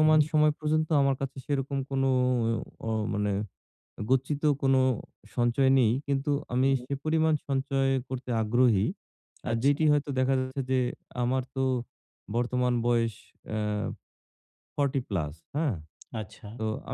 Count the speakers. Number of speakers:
2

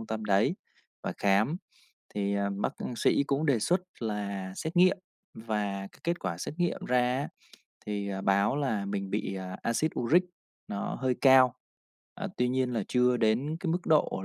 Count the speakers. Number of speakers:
1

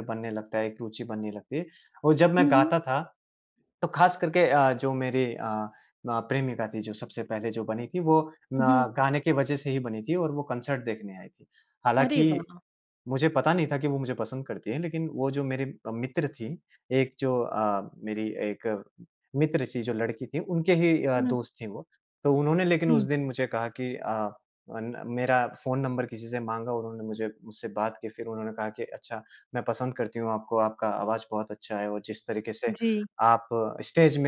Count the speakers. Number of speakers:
2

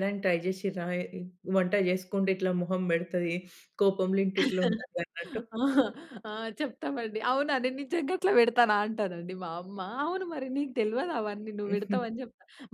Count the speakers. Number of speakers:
2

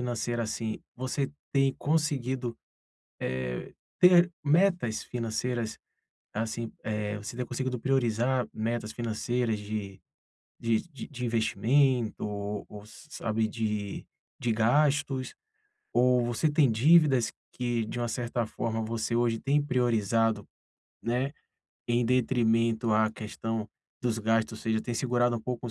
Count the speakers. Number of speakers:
1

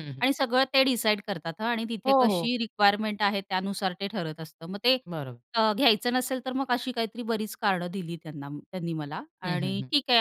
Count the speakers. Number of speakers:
2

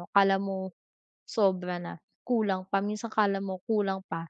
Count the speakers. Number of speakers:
1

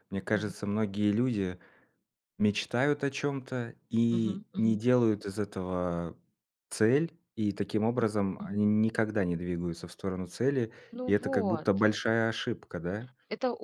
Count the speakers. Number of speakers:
2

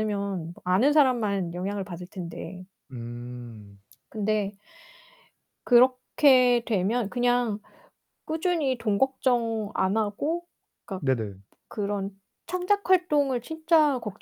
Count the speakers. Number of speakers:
2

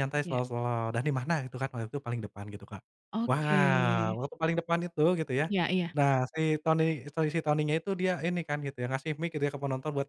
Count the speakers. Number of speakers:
2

